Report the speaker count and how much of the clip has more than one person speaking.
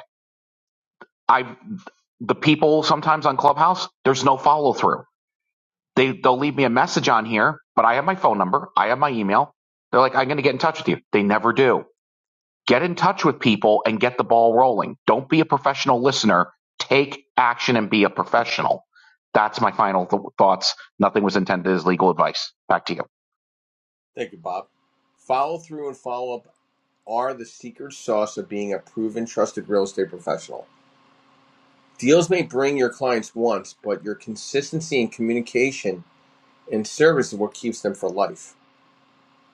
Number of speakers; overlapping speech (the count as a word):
two, no overlap